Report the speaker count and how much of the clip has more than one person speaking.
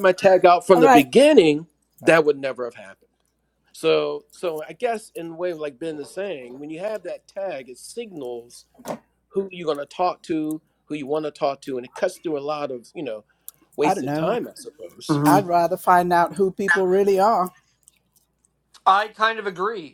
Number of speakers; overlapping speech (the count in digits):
3, about 6%